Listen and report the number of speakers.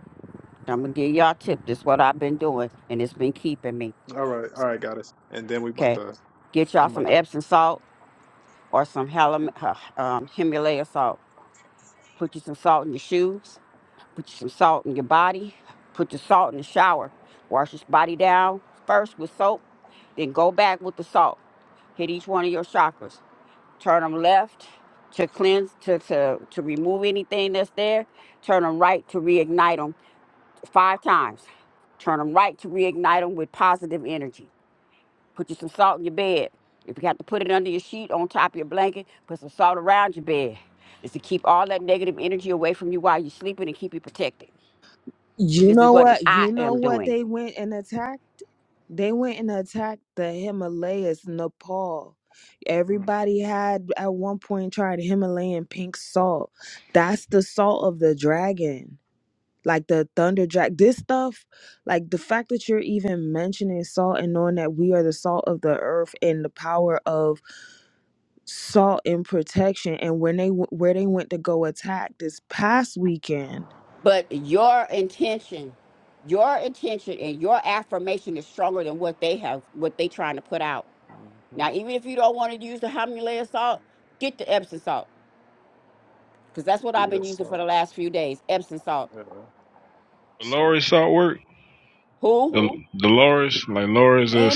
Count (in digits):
4